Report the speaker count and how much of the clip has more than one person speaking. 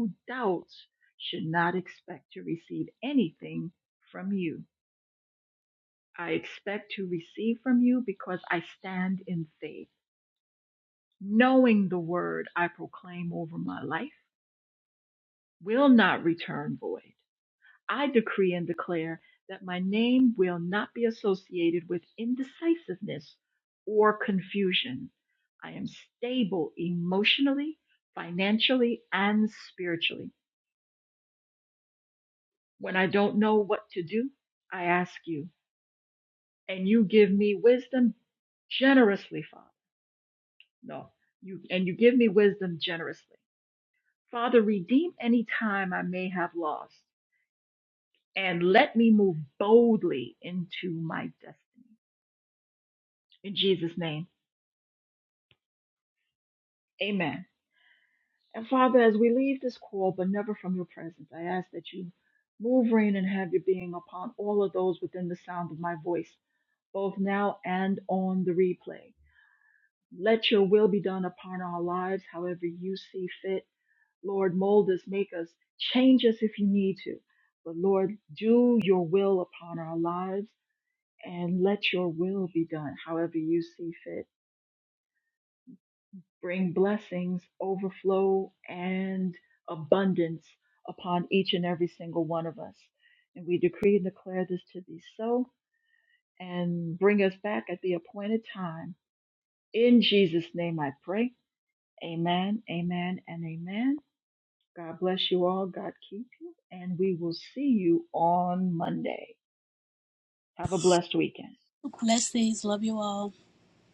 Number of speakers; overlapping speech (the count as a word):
two, no overlap